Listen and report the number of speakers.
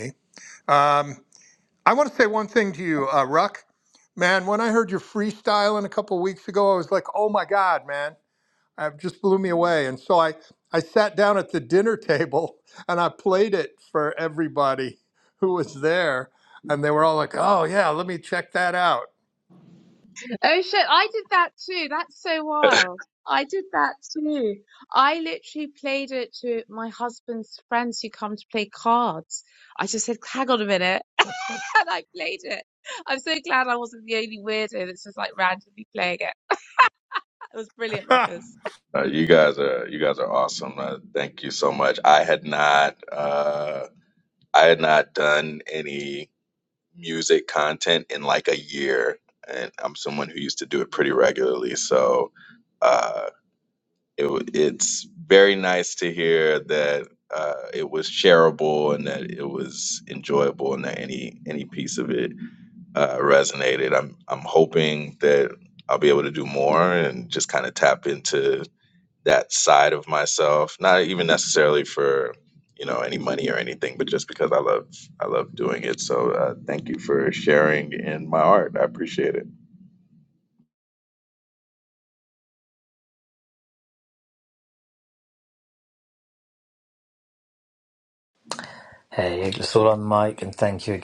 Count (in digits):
4